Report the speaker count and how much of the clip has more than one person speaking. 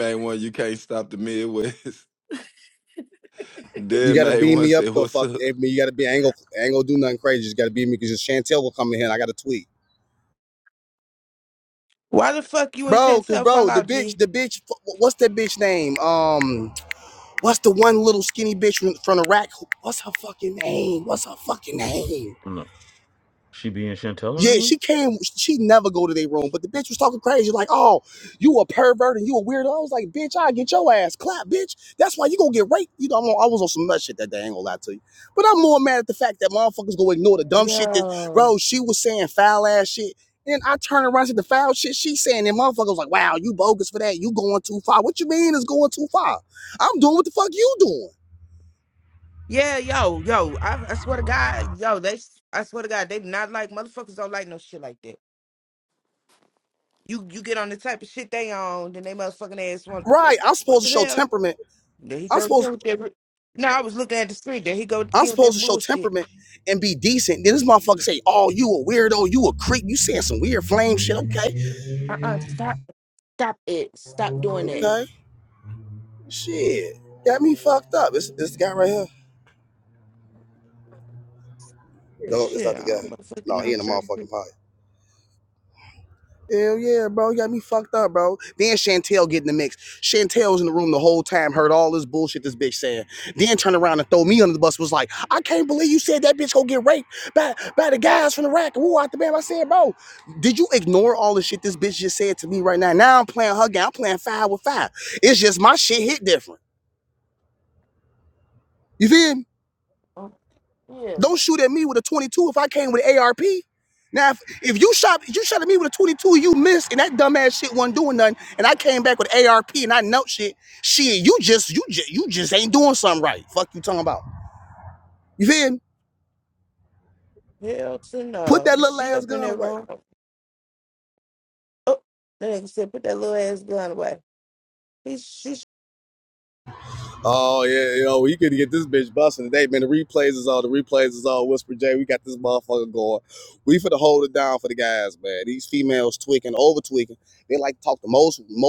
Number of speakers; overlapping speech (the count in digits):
4, about 6%